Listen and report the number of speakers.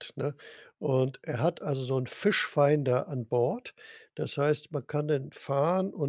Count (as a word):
one